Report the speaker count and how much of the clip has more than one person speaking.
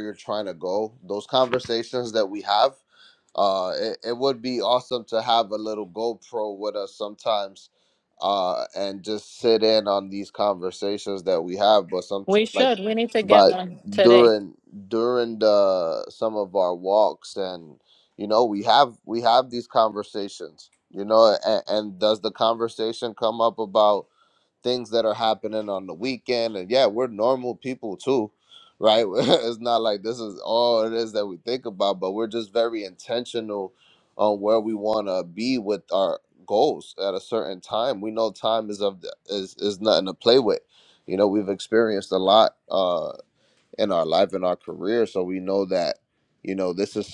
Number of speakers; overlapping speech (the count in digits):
2, about 2%